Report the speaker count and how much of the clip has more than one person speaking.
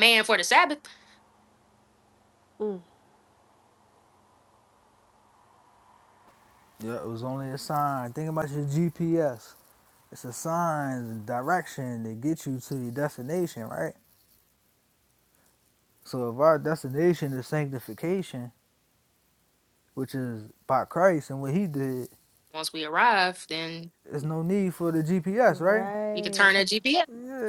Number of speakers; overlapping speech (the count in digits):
3, about 3%